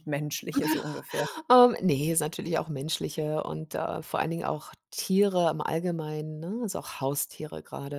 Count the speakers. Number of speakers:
two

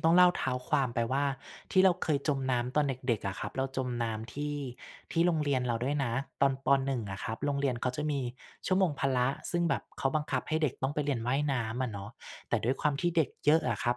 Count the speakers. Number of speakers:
one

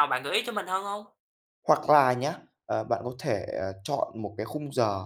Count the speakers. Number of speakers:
two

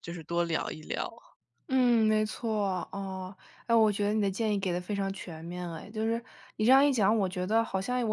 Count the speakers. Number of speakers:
two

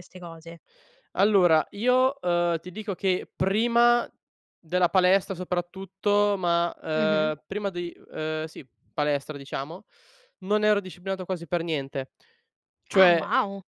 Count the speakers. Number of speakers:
two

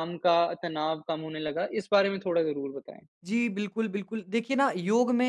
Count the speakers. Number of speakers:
two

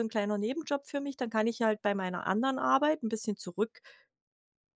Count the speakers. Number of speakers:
one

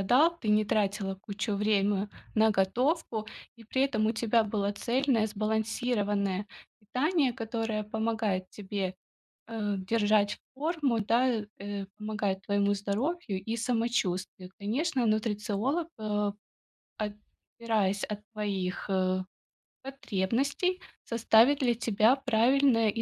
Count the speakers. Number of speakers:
one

